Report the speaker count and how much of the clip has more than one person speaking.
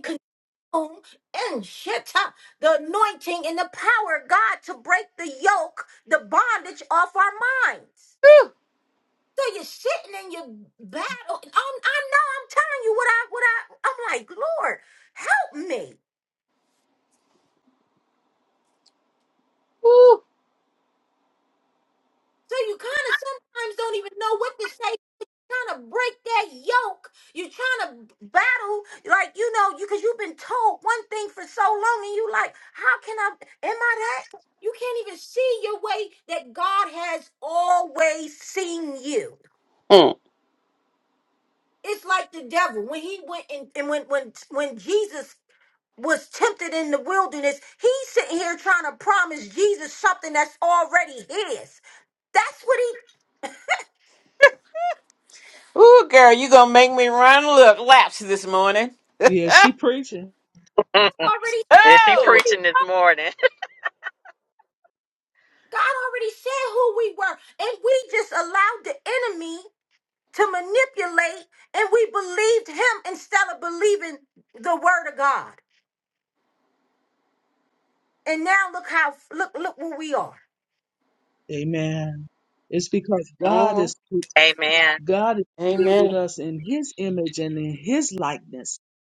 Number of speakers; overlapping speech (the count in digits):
4, about 2%